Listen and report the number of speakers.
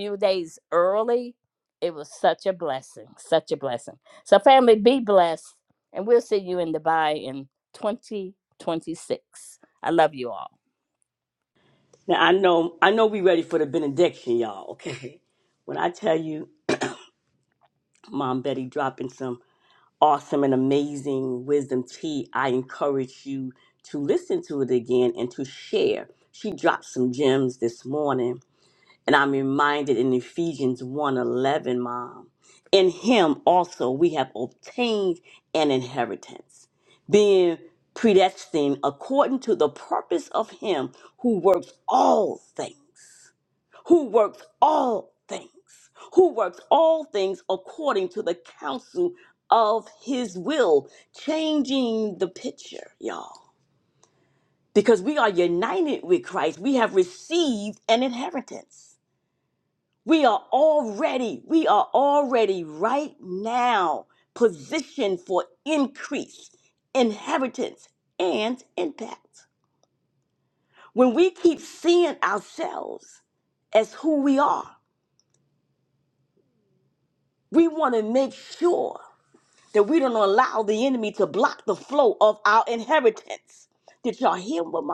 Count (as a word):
two